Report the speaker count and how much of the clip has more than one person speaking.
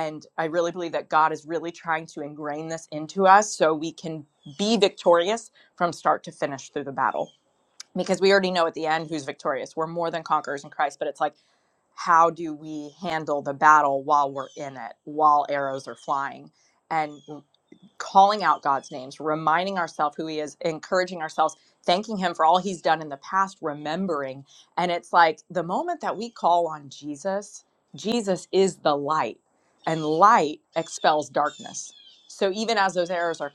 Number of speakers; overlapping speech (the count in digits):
1, no overlap